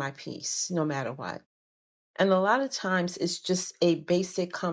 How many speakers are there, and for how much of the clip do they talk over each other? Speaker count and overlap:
1, no overlap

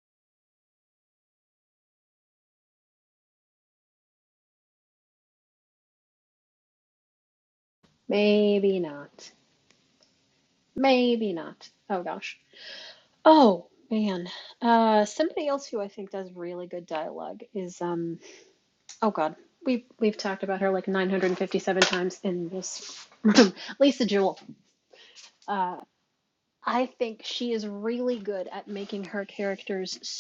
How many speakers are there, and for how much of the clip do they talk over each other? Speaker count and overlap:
1, no overlap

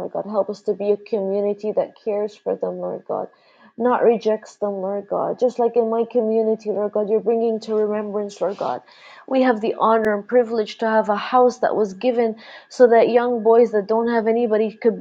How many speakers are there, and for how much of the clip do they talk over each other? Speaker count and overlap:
1, no overlap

